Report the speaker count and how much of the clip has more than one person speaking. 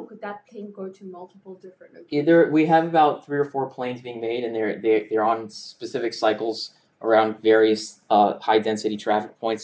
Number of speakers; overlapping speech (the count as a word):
two, about 7%